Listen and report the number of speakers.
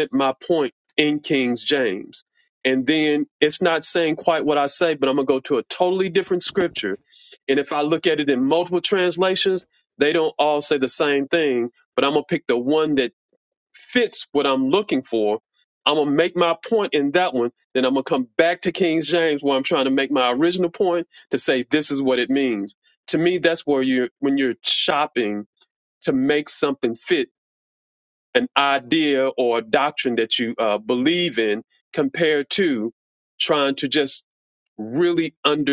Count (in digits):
1